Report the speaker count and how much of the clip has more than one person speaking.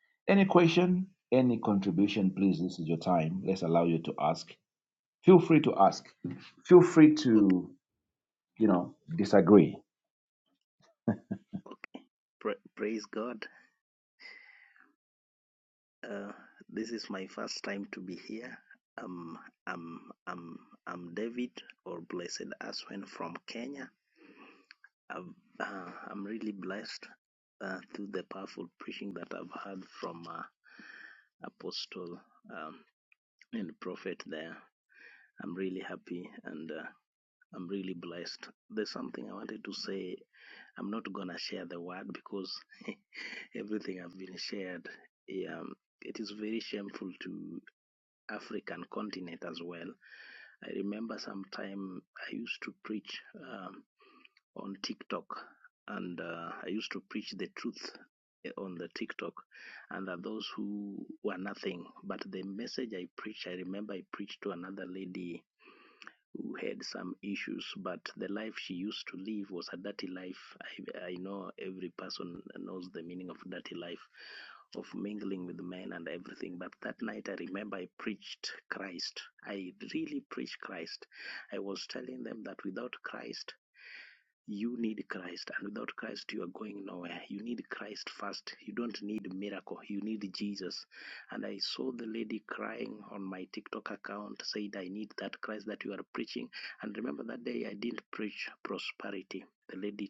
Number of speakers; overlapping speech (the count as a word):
two, under 1%